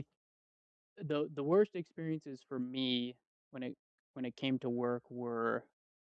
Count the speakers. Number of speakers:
1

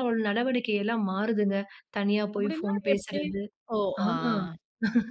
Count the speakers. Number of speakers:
2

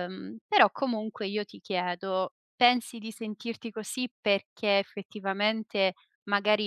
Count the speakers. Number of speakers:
1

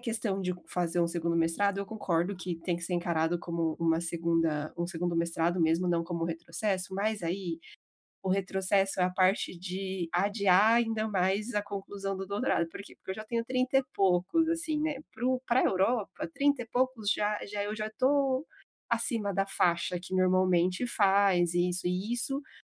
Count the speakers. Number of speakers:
1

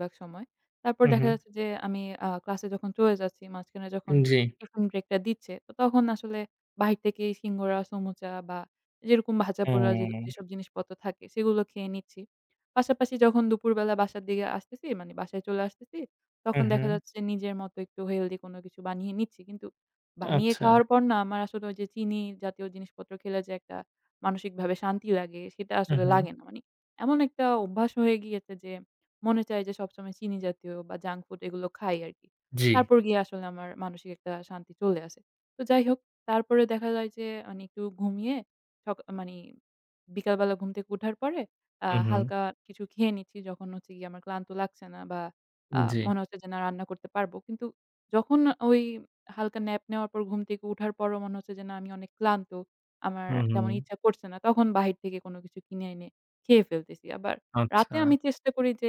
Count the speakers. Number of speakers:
2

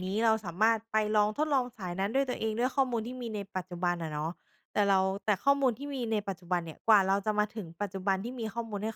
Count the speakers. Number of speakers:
1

